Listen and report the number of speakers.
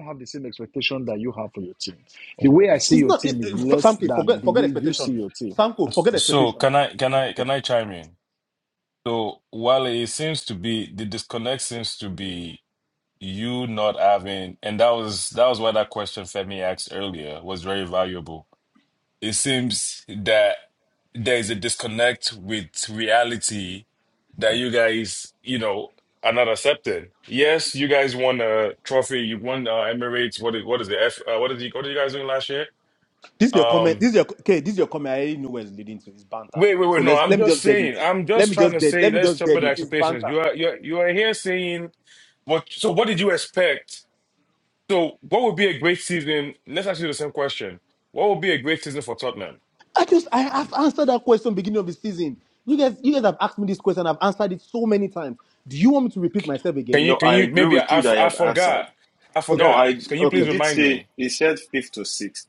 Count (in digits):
4